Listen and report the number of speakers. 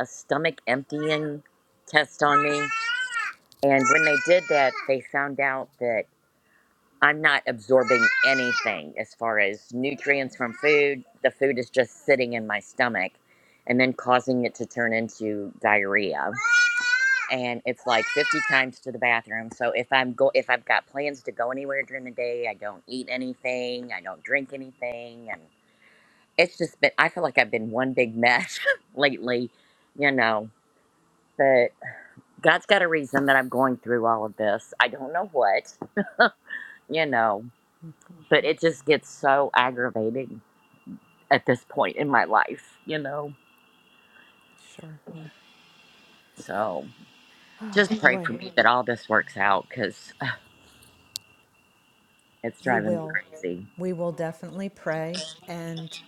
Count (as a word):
two